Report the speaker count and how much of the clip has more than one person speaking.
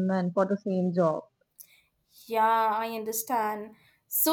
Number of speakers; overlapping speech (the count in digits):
2, no overlap